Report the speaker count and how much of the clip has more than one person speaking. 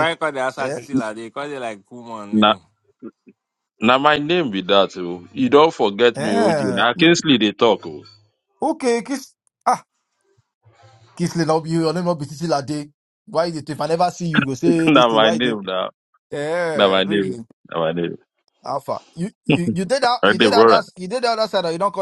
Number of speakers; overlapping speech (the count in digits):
3, about 14%